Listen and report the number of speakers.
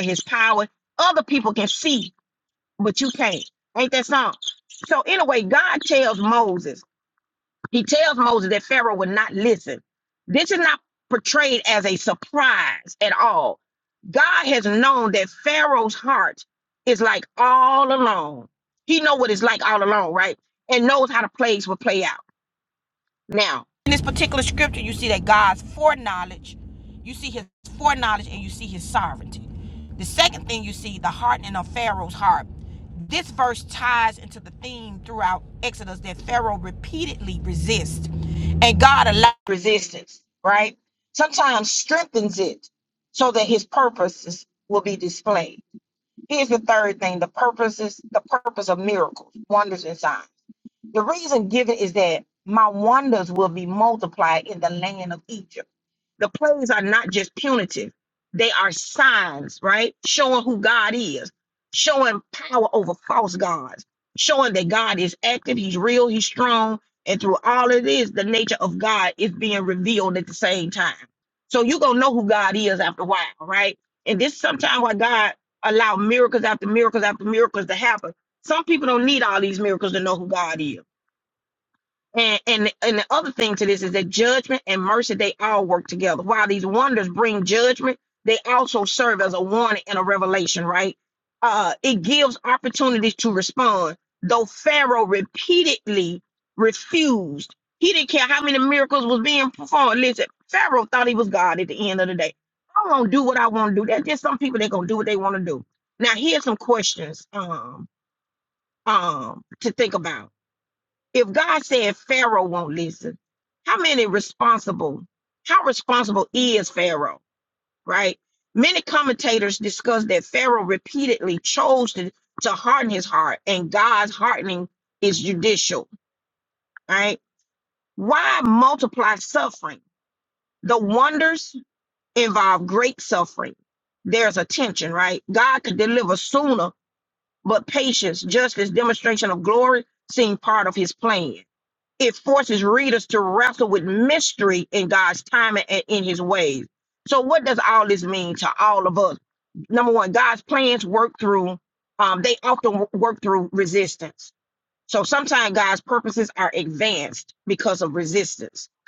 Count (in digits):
1